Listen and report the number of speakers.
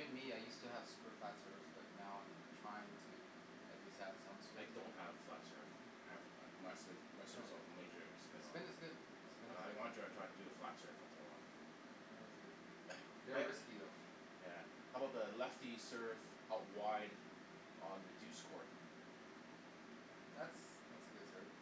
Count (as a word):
two